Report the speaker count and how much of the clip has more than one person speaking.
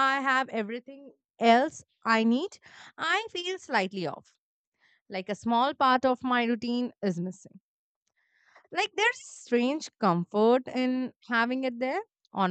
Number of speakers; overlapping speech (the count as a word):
one, no overlap